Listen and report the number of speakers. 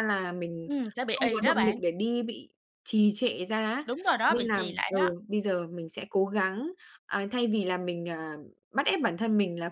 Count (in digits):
2